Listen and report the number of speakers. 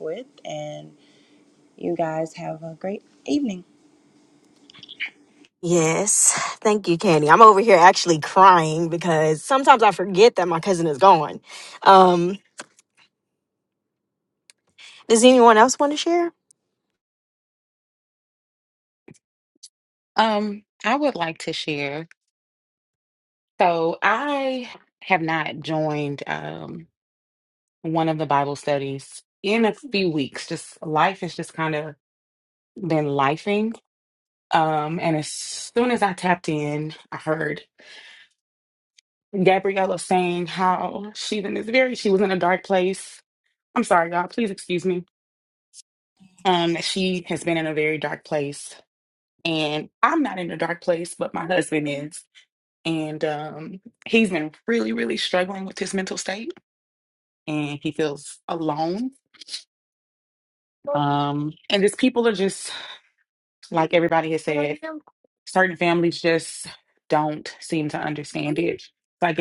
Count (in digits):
3